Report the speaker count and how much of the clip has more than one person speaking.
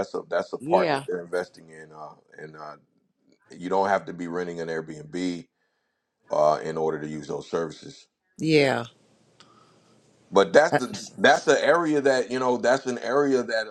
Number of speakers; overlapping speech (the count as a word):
two, about 4%